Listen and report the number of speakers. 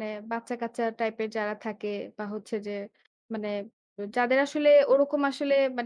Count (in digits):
1